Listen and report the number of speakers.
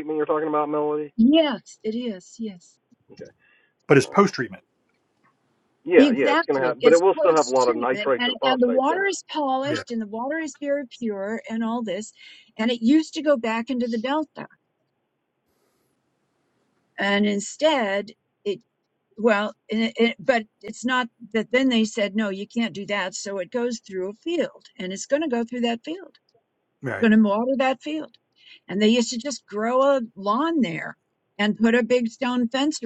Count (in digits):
3